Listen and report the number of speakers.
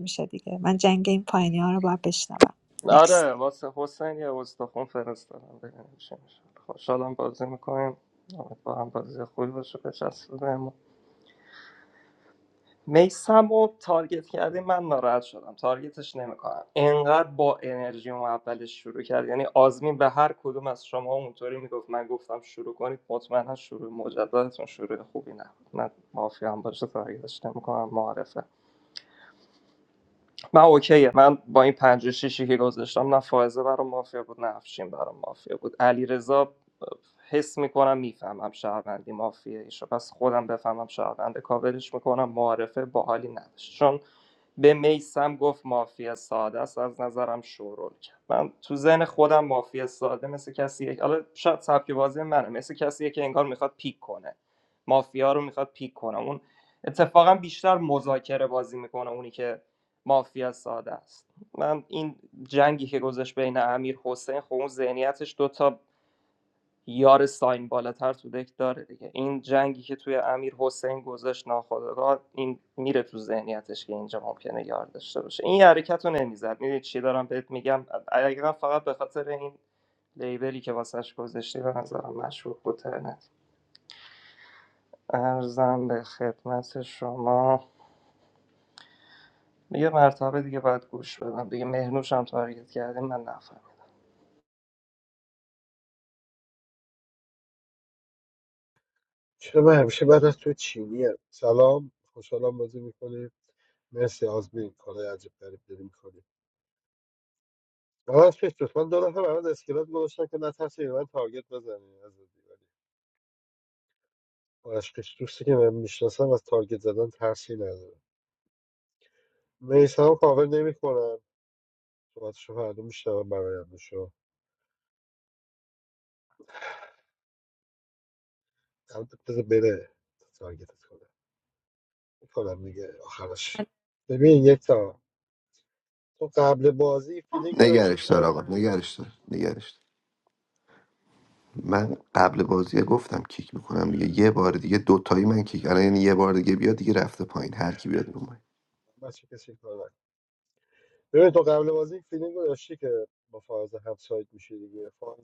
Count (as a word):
four